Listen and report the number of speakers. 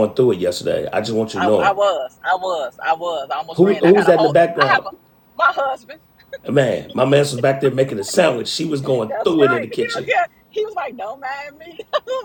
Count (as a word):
two